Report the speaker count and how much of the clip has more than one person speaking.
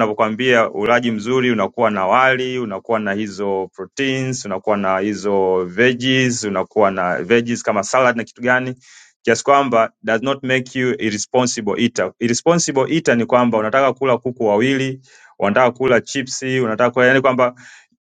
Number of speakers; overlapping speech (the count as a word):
one, no overlap